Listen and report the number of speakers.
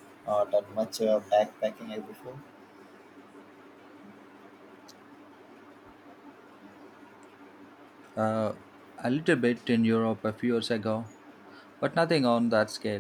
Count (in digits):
2